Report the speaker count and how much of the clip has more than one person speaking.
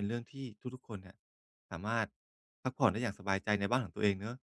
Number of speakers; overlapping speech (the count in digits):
1, no overlap